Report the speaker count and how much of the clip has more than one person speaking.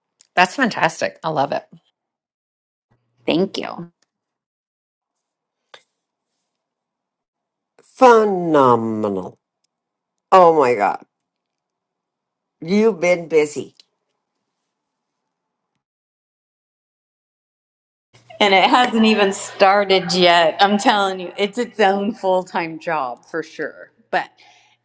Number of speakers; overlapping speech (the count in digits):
3, no overlap